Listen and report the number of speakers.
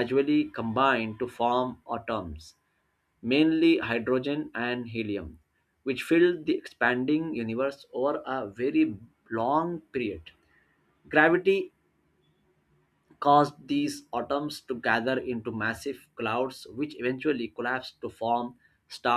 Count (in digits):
1